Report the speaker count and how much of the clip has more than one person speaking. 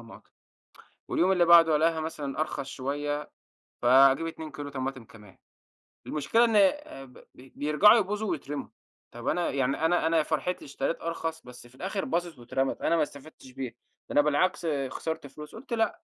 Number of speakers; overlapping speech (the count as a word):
one, no overlap